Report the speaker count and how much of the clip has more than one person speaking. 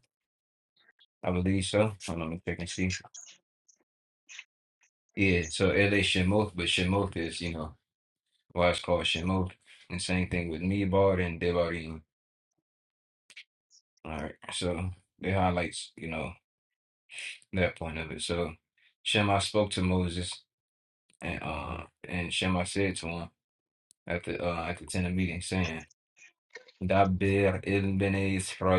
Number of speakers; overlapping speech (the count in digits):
1, no overlap